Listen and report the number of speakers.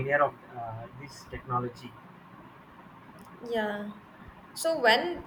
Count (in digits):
2